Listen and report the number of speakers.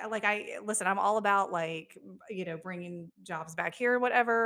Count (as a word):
one